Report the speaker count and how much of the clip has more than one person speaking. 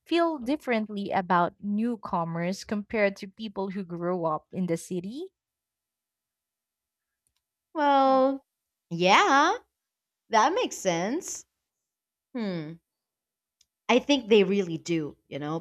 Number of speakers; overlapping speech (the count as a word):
two, no overlap